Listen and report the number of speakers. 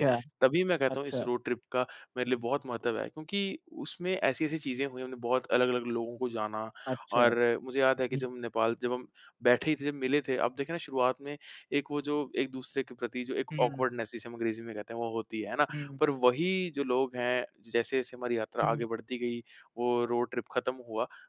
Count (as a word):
two